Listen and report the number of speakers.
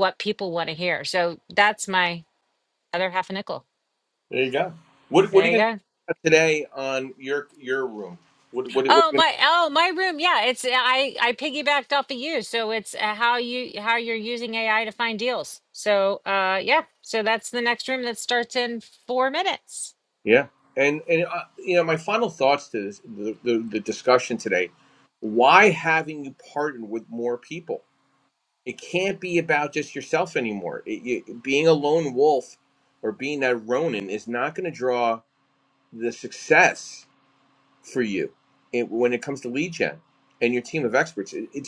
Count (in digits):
2